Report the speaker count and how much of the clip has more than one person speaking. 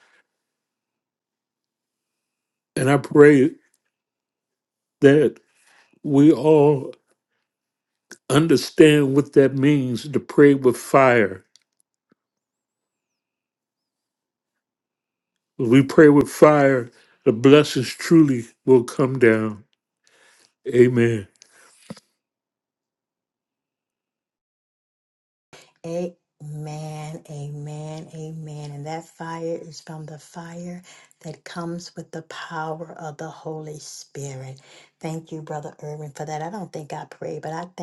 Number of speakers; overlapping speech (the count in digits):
2, no overlap